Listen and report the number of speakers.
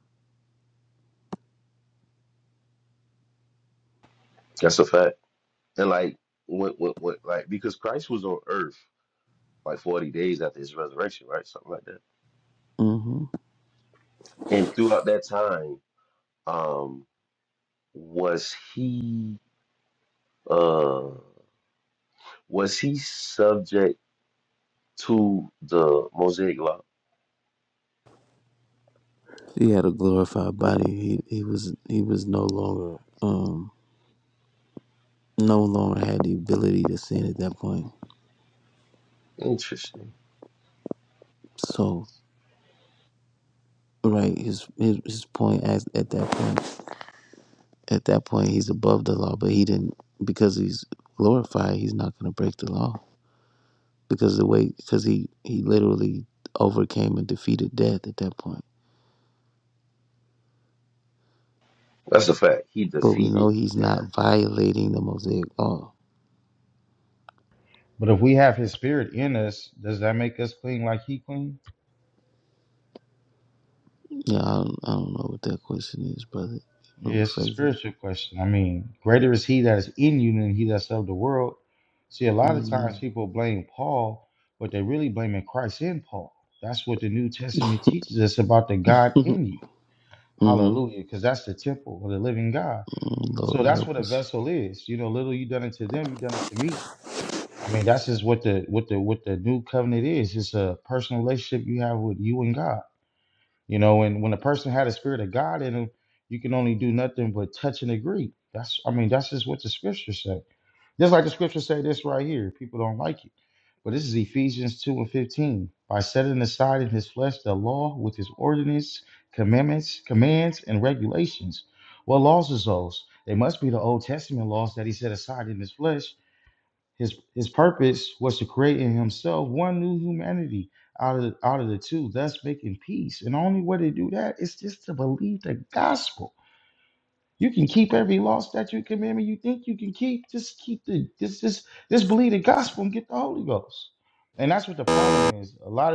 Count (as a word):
three